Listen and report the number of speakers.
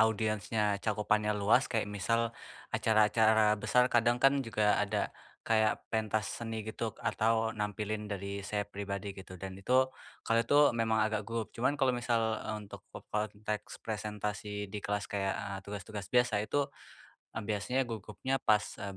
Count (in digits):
1